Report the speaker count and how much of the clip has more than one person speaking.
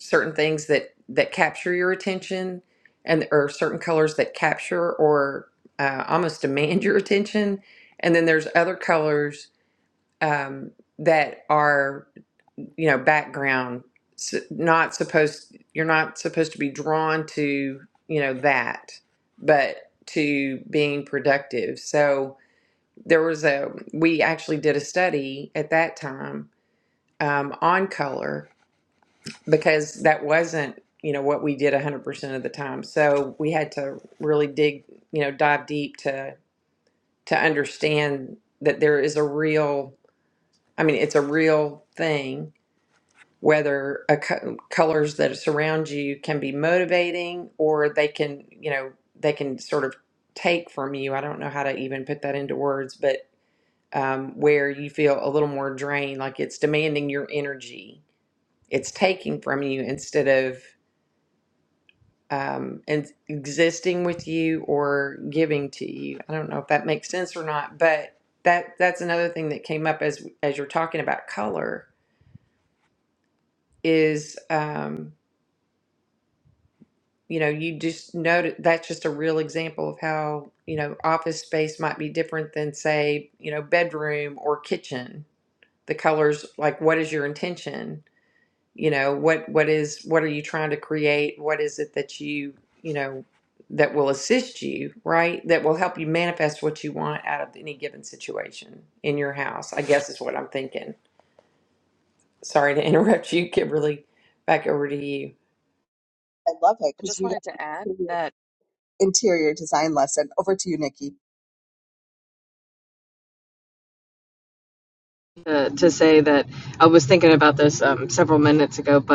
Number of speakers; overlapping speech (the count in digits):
3, about 1%